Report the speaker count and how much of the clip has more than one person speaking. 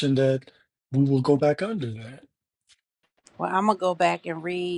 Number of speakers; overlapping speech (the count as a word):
two, no overlap